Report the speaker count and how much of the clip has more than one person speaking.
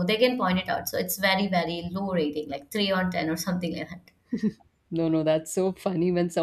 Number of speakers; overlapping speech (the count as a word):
two, no overlap